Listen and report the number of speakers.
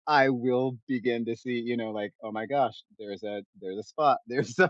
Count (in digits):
1